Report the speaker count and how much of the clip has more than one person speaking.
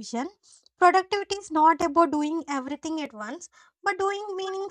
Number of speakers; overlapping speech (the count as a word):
one, no overlap